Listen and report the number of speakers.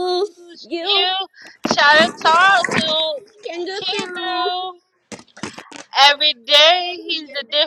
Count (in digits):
2